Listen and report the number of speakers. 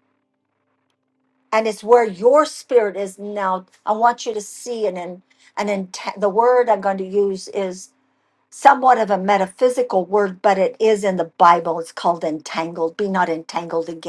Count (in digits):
1